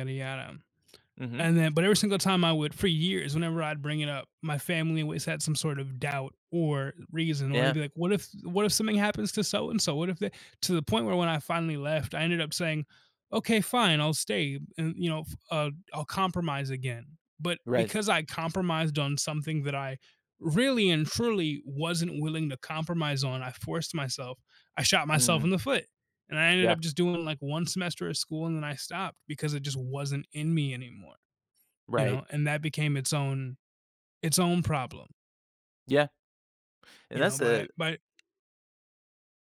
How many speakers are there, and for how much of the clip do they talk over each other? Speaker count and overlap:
2, about 5%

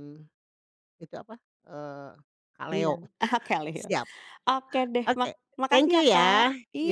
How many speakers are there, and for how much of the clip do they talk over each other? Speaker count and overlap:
2, about 26%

